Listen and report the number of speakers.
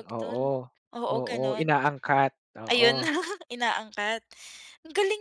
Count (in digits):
2